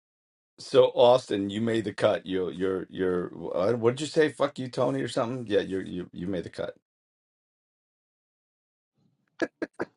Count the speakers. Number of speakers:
1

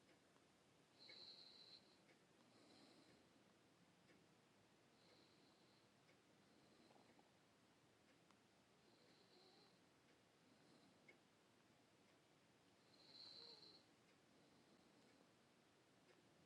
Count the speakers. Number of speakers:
0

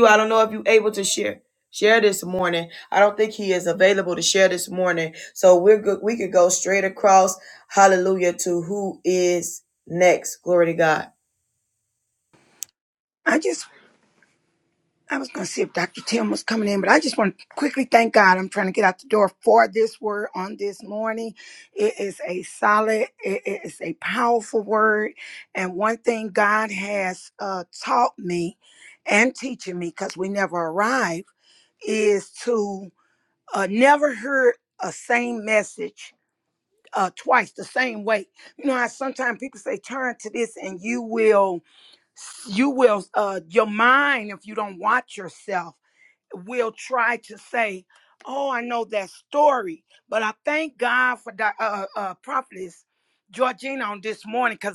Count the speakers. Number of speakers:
2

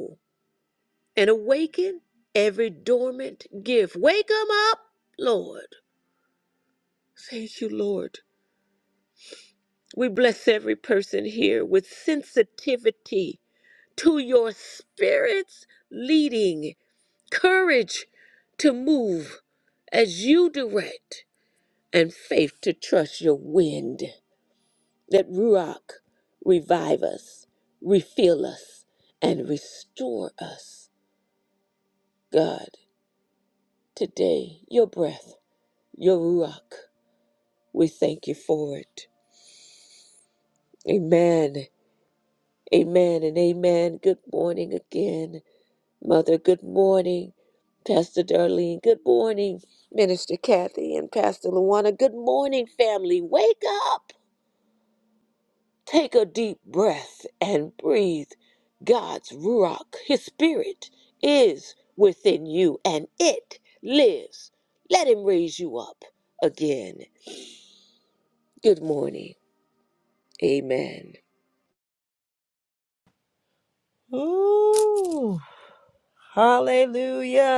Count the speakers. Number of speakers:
2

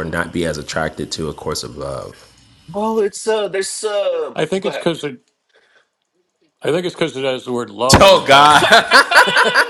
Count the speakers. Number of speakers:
3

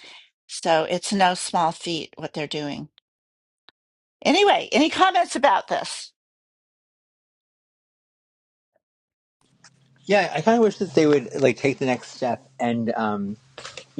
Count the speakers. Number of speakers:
2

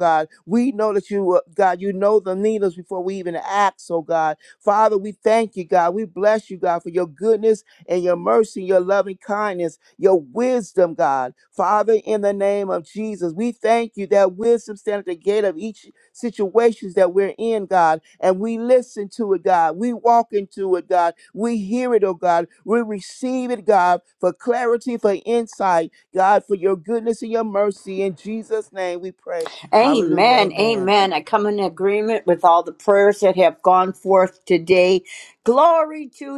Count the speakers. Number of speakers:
2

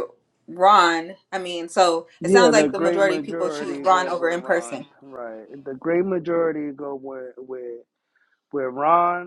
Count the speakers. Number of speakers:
2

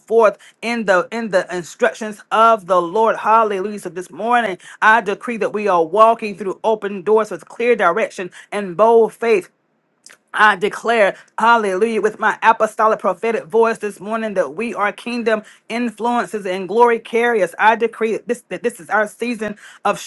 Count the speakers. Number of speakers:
1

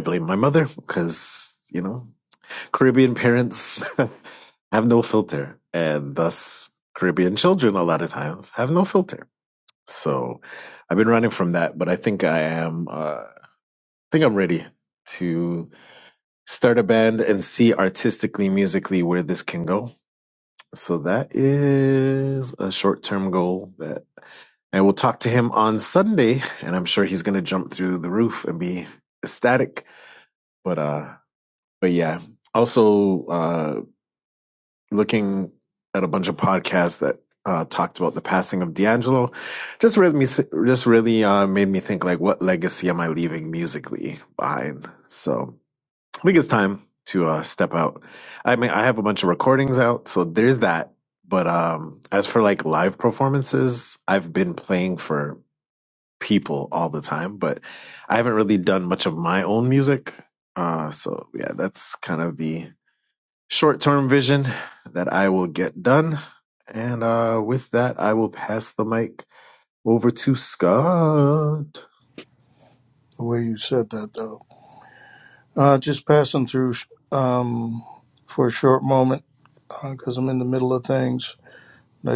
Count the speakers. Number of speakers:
2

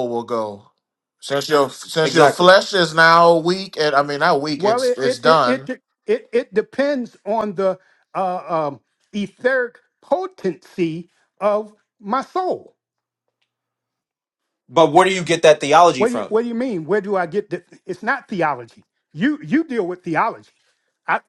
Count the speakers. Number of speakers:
3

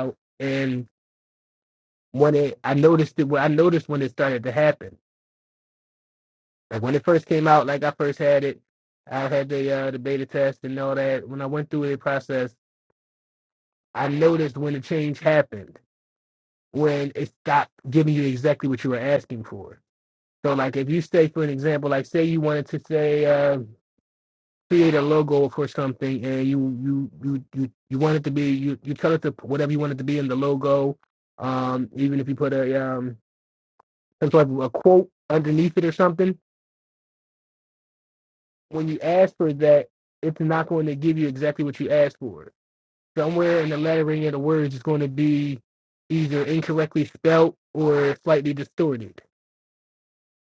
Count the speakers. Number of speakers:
1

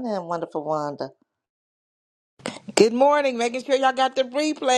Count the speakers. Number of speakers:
2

